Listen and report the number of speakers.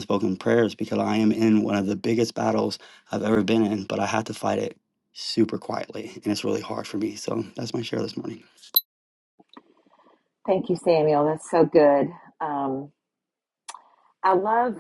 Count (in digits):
2